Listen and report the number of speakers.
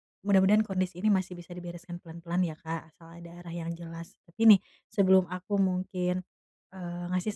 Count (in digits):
1